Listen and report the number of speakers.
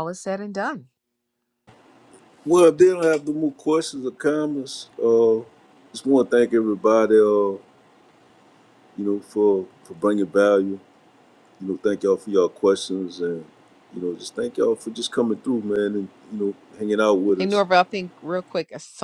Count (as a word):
two